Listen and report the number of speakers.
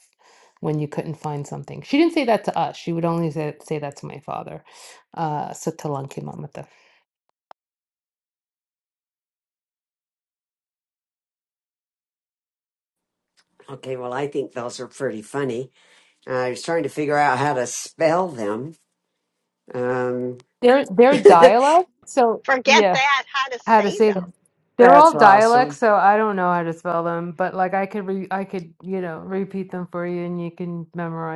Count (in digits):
3